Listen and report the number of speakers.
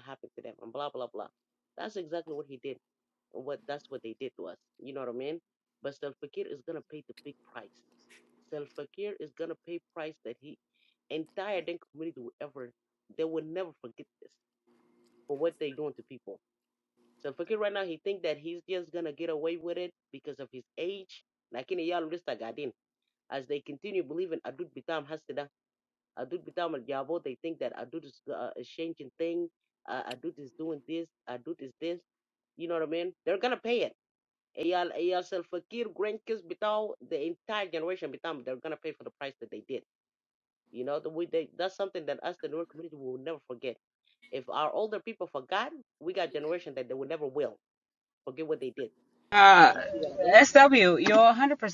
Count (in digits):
2